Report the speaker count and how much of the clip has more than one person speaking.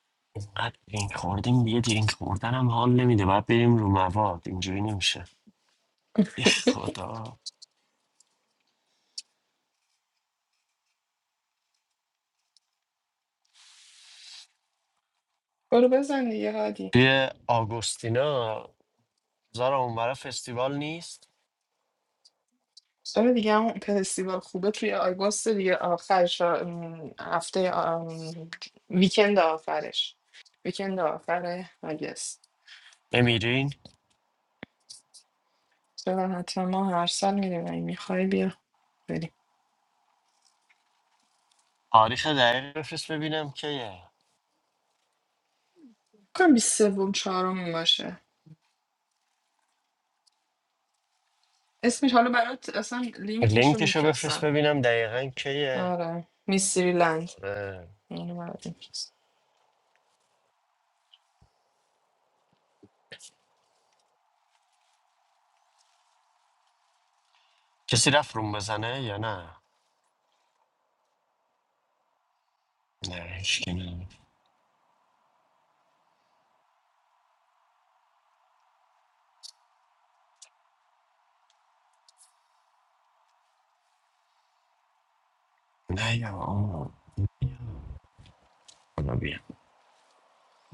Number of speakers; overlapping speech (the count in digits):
2, about 1%